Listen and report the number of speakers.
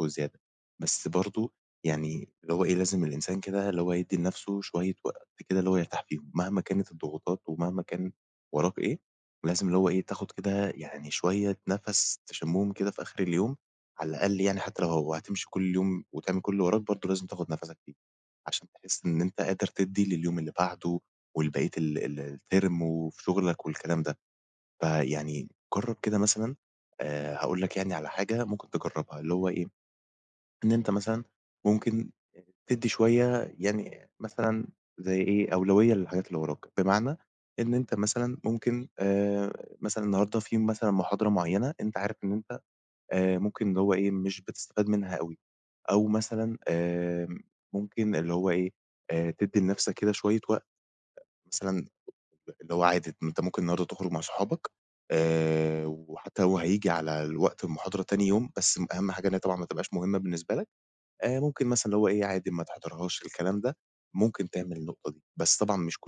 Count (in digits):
1